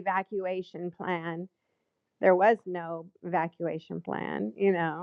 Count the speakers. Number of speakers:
1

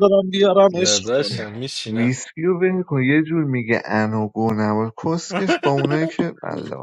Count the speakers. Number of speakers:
3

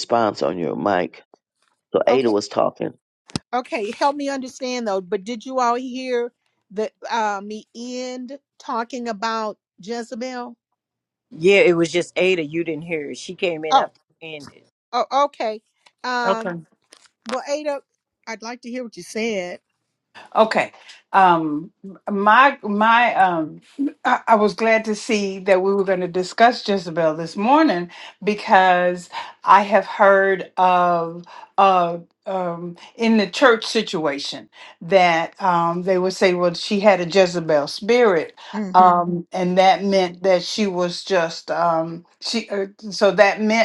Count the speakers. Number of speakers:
4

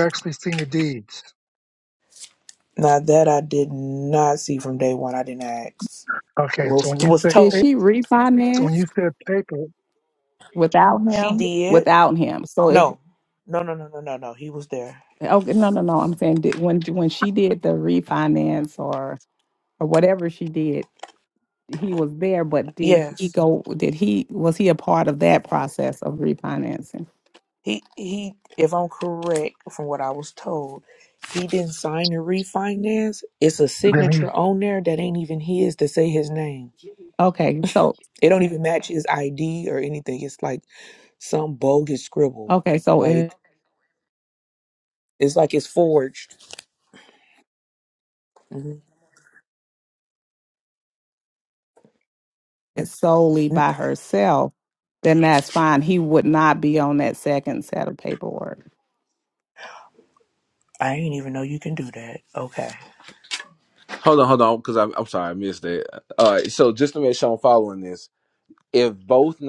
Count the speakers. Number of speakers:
4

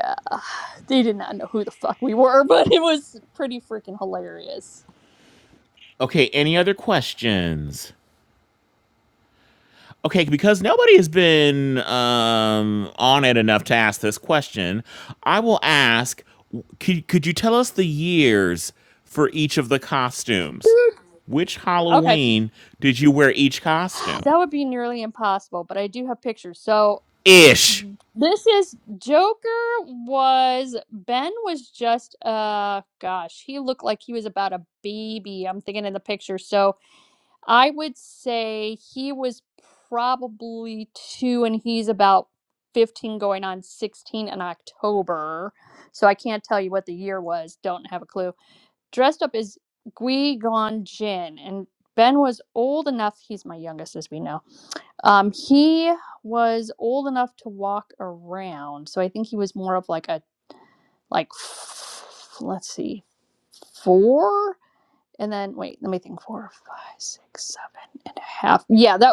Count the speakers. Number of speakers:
2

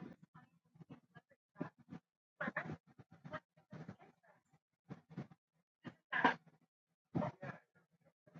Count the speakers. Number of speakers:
0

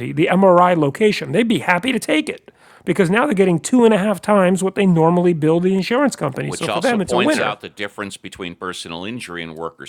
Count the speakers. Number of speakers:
2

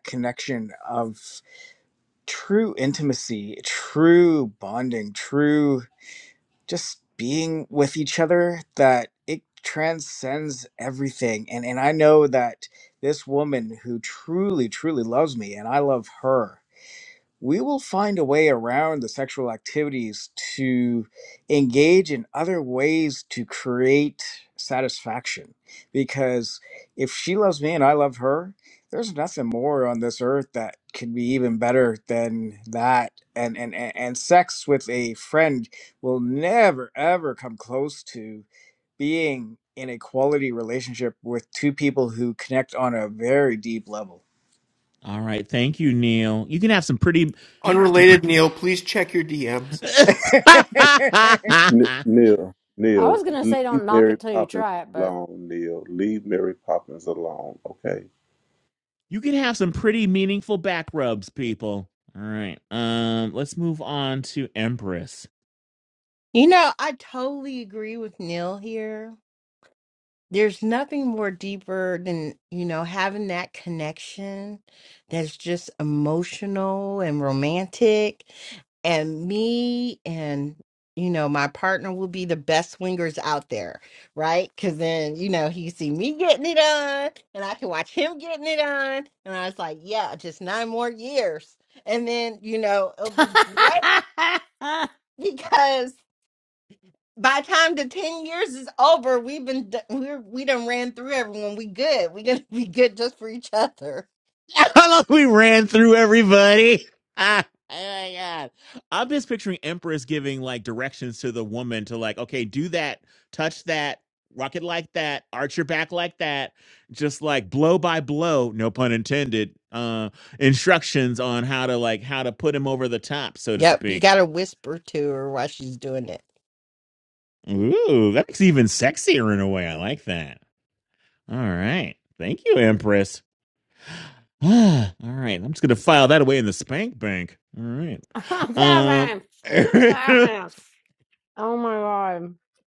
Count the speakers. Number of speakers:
6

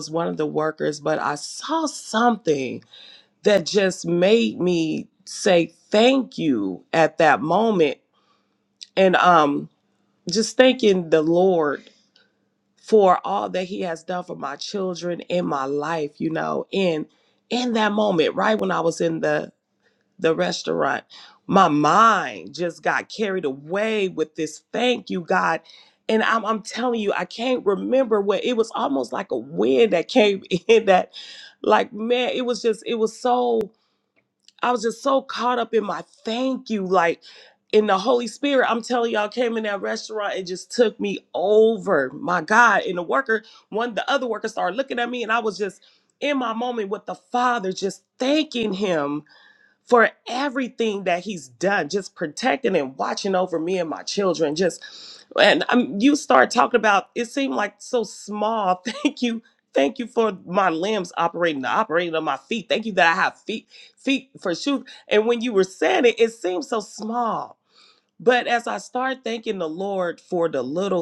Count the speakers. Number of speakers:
1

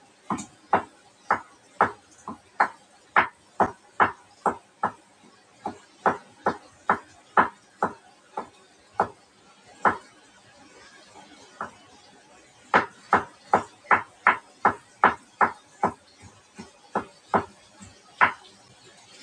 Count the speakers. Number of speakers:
0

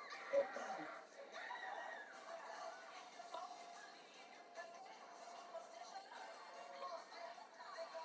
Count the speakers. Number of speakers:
0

